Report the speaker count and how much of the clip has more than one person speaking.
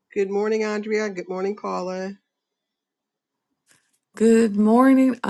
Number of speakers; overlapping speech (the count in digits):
2, no overlap